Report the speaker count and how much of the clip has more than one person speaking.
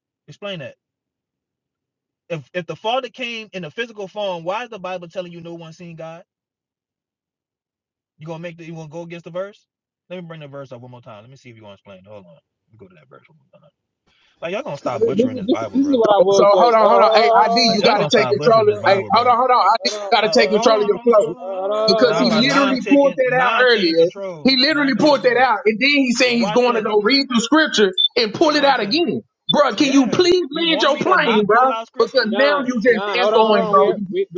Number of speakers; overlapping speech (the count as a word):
three, about 39%